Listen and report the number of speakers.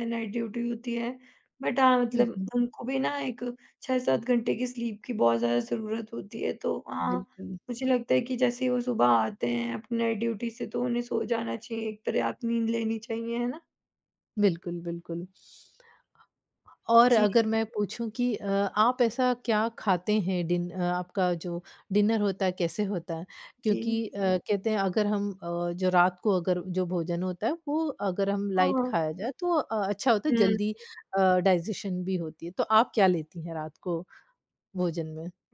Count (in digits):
2